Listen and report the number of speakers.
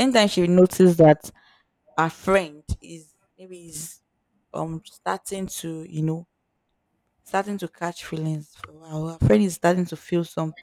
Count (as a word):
one